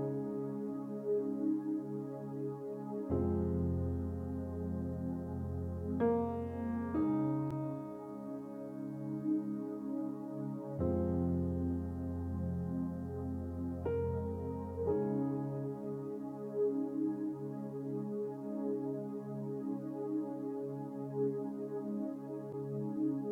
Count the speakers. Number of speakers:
zero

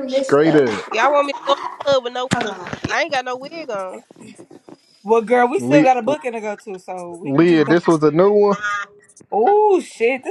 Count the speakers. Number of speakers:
four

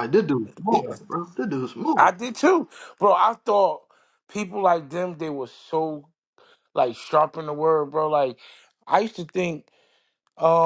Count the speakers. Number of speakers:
two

